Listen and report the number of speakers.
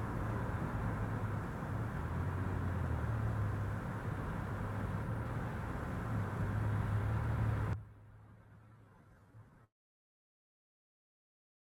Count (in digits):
0